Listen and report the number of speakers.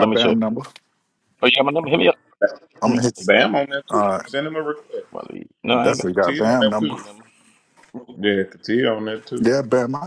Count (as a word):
three